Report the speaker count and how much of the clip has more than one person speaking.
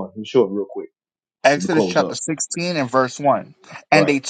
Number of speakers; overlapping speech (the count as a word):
two, about 19%